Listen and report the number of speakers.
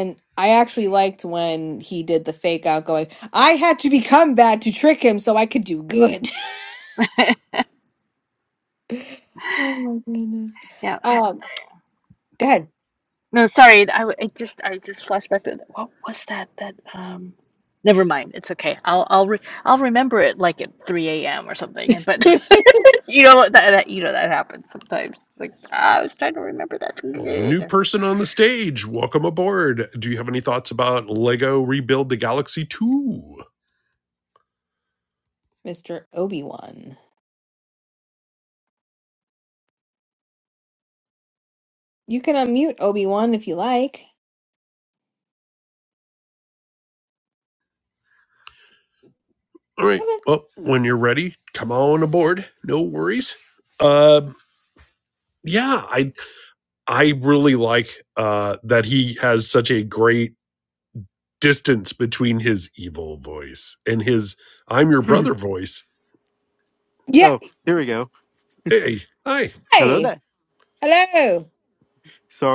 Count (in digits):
4